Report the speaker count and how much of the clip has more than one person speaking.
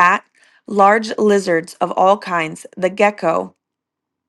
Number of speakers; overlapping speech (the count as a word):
one, no overlap